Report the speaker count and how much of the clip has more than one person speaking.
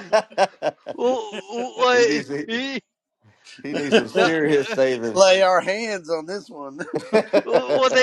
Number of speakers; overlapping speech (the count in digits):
3, about 12%